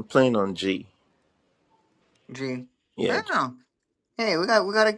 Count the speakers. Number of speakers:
two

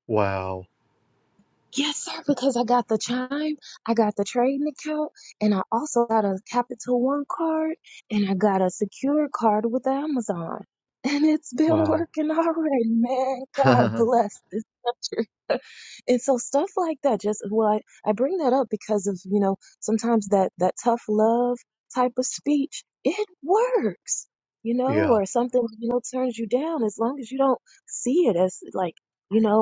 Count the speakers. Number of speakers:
two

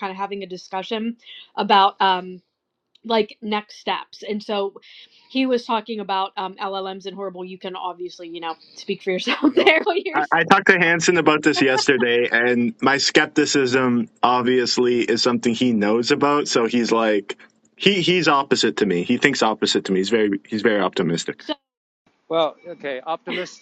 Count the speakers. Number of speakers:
three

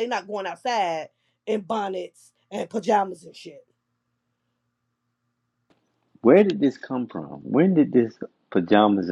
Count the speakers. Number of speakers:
two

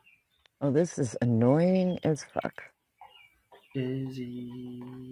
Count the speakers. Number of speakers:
two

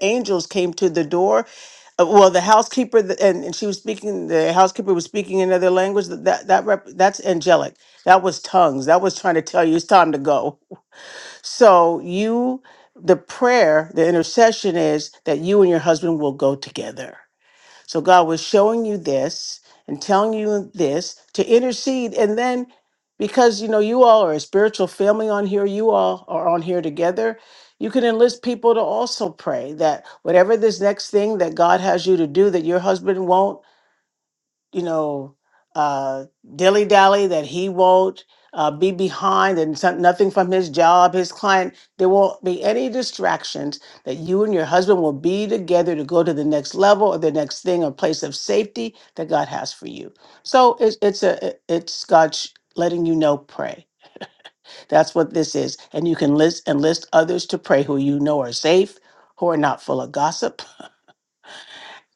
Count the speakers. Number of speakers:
one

